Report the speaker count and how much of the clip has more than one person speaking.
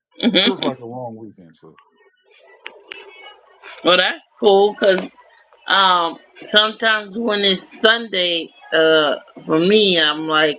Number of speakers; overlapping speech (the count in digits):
2, about 2%